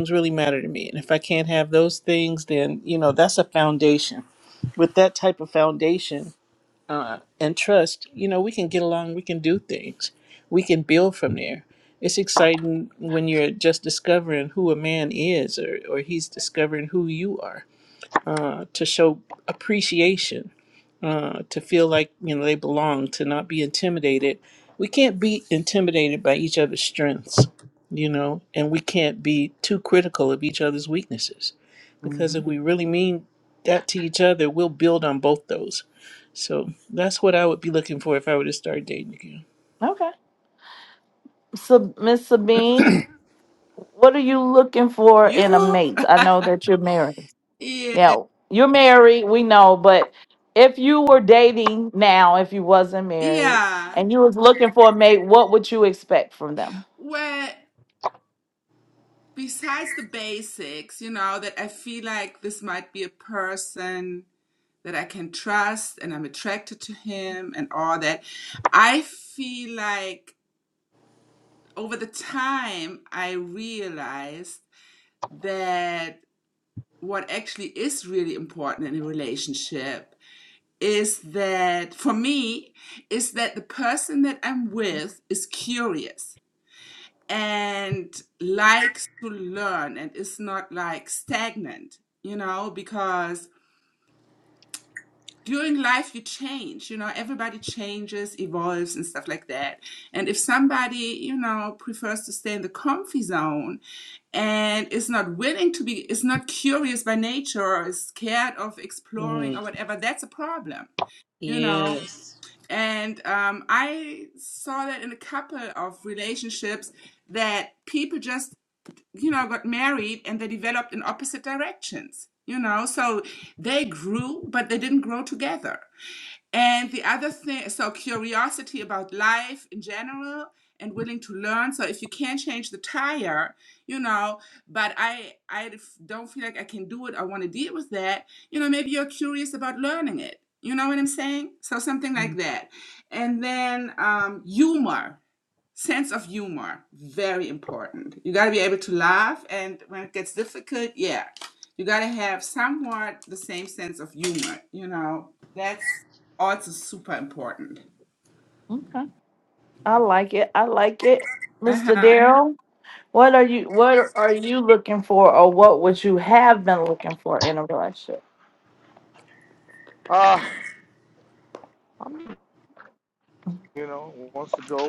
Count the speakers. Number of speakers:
4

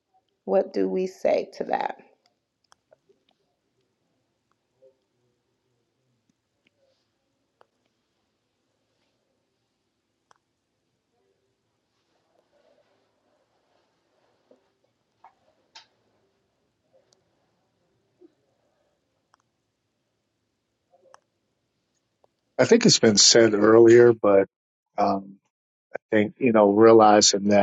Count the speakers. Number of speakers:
2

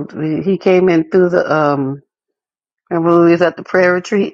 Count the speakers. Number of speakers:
1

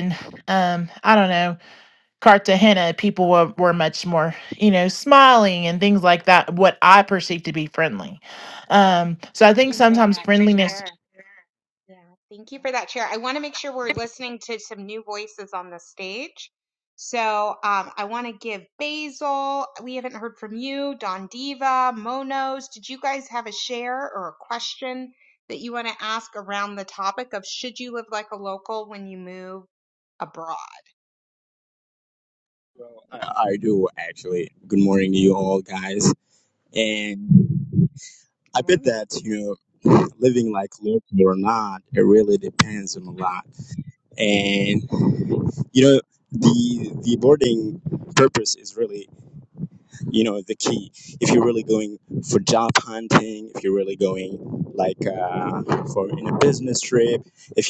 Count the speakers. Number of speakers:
3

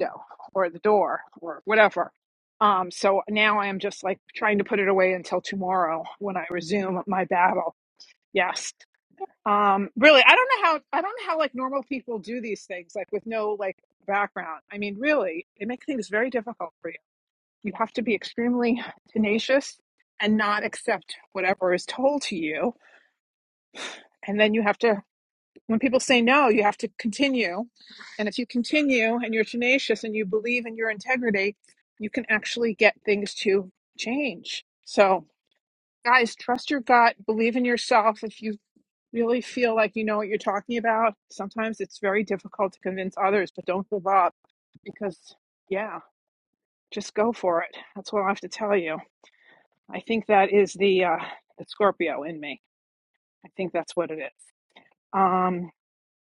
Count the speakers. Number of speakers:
1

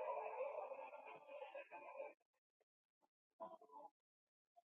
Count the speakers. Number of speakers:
0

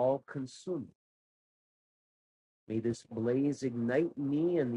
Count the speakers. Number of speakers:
1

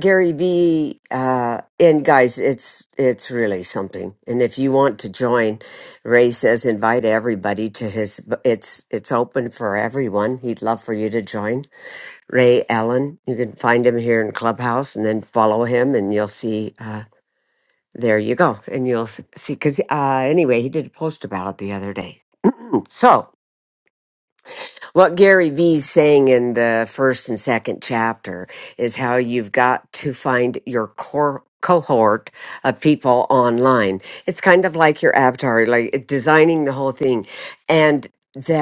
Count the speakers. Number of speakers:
1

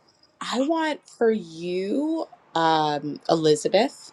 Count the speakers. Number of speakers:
1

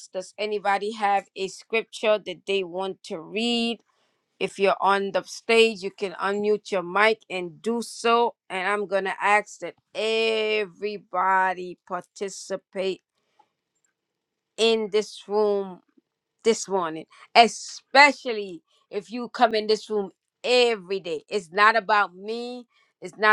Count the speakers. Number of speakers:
1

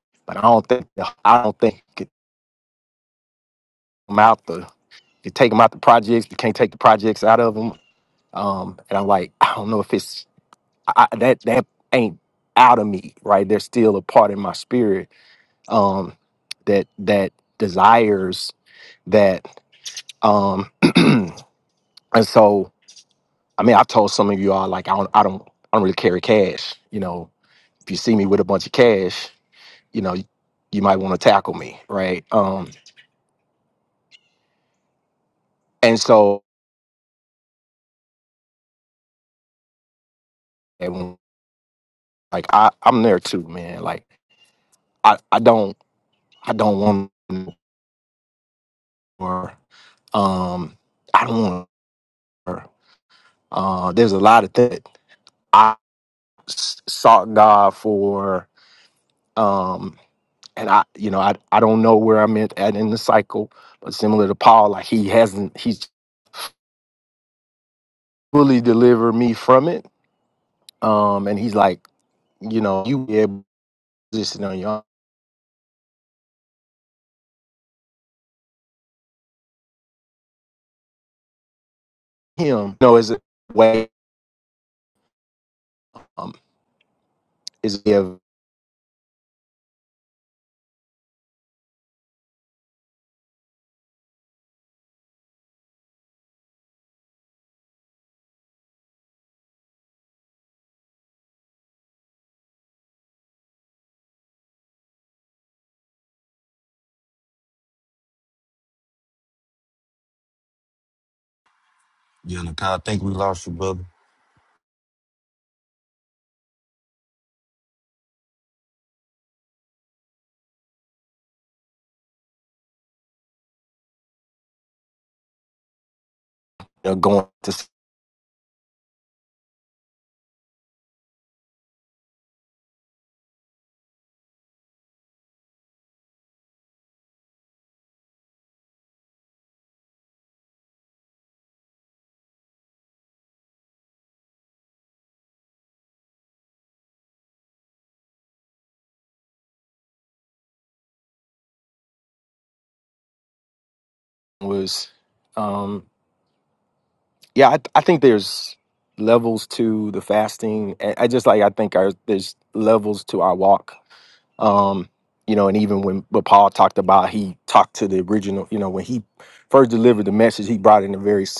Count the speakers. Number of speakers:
2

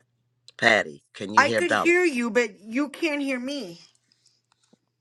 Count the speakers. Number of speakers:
2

